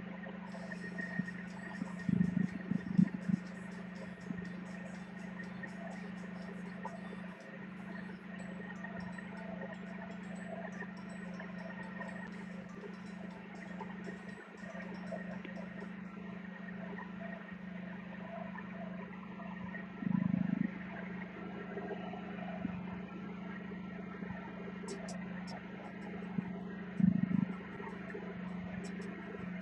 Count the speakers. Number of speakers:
0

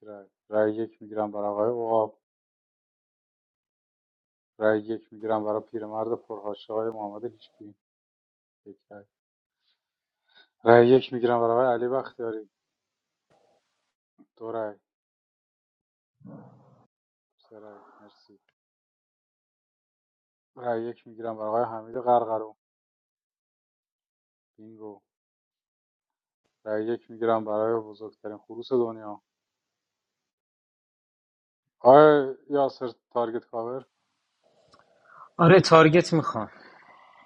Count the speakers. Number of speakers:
2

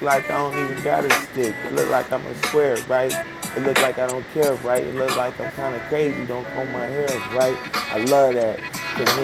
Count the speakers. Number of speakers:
1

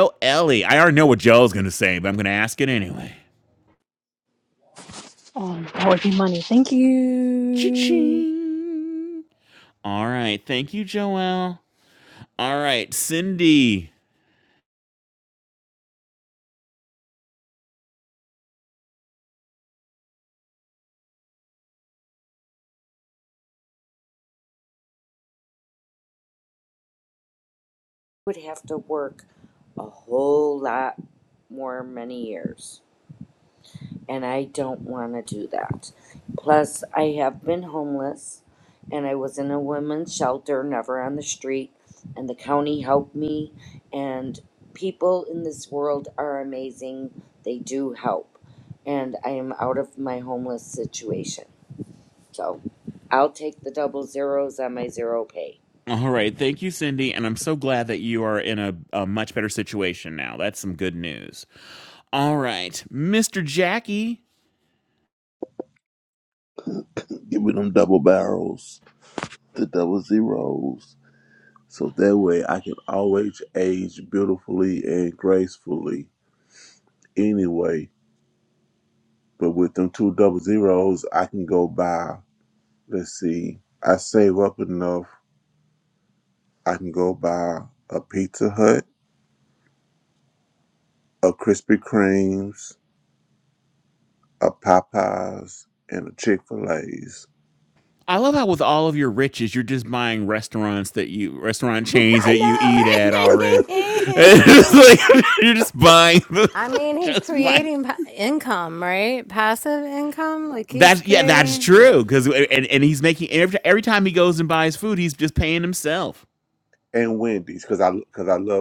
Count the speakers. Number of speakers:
5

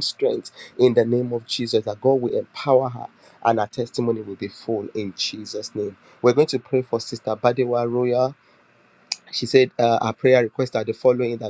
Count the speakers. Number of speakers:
1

